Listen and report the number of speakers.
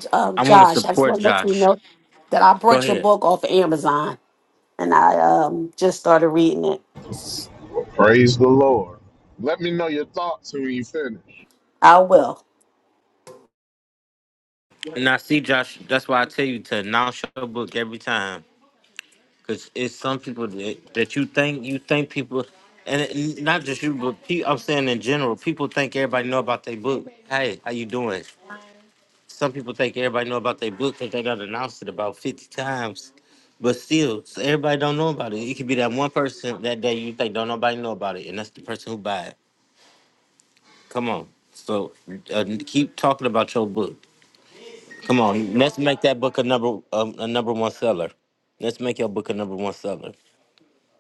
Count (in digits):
3